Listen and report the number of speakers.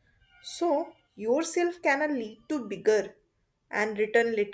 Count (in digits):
1